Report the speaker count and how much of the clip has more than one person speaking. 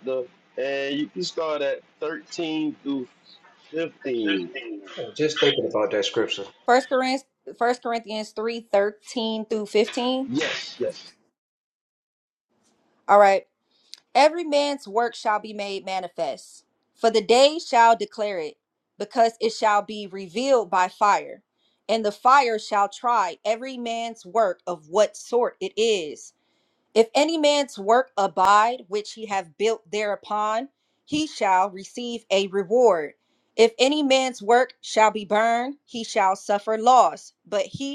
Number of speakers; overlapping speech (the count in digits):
3, no overlap